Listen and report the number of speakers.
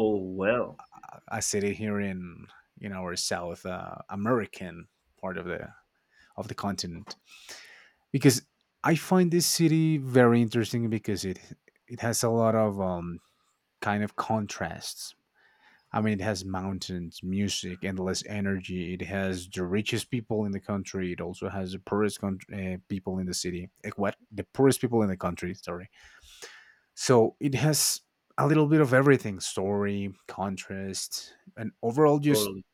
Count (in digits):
2